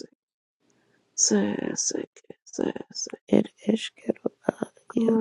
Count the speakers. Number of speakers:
2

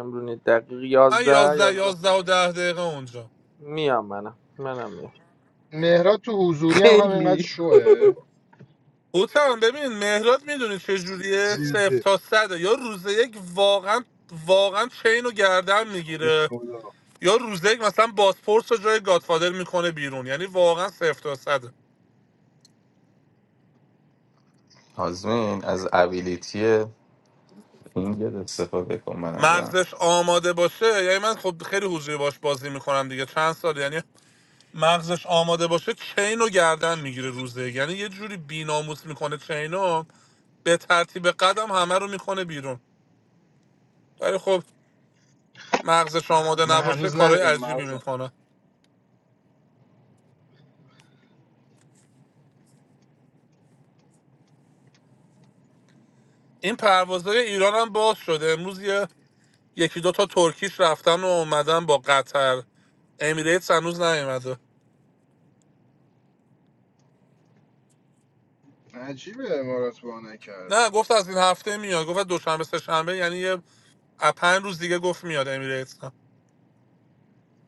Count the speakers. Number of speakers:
4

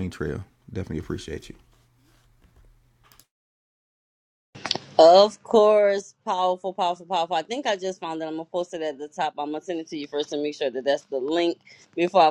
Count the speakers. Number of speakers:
2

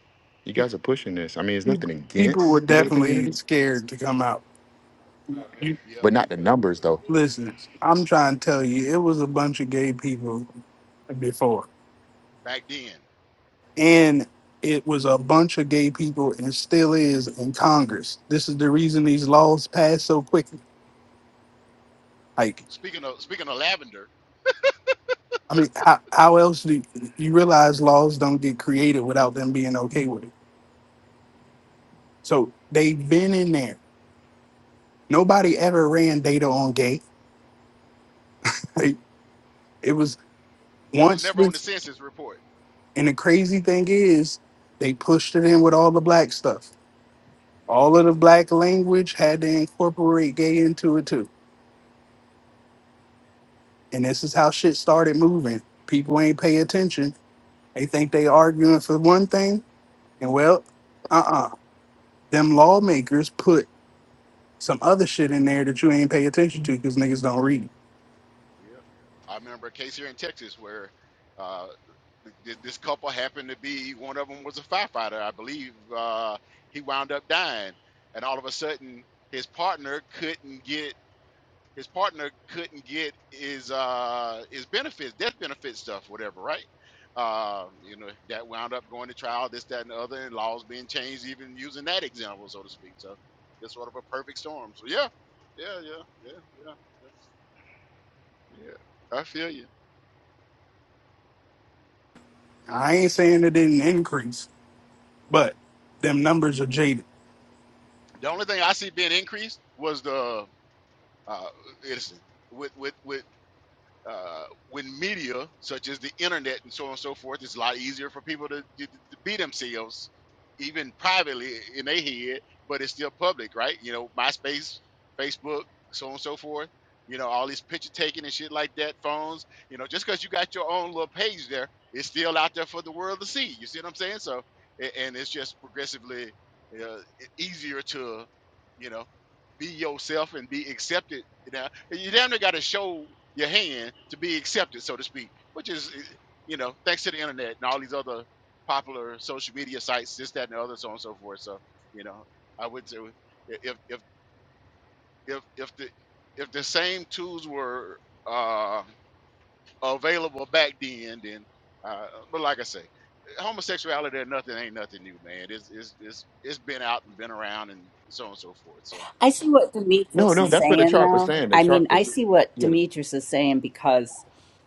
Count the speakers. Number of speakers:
4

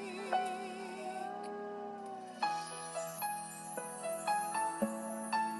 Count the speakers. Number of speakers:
0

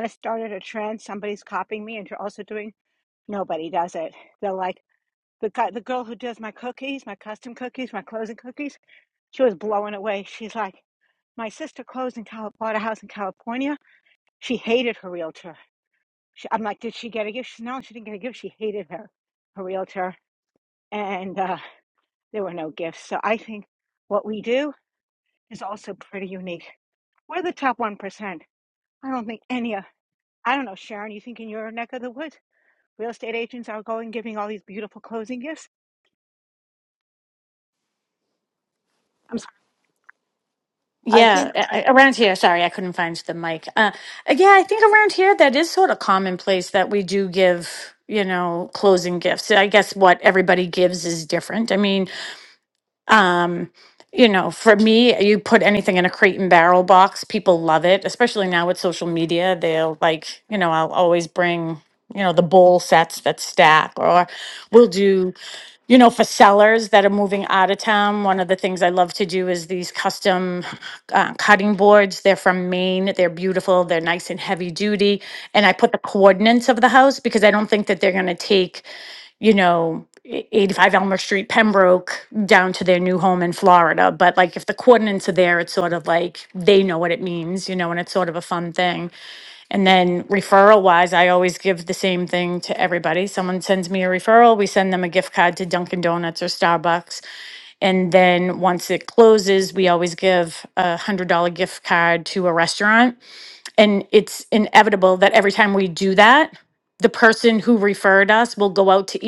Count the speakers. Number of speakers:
2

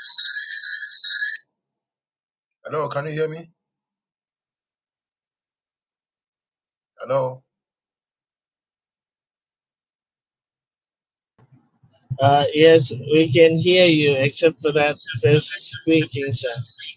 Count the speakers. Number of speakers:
2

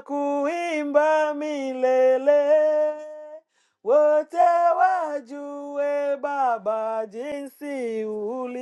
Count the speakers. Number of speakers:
1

